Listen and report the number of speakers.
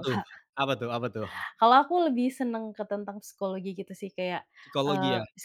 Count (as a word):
two